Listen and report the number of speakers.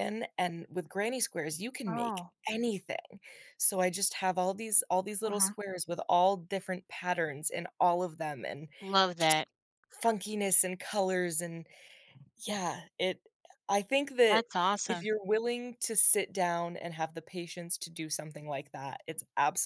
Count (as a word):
two